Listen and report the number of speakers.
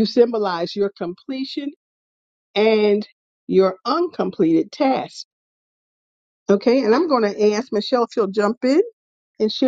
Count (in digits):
1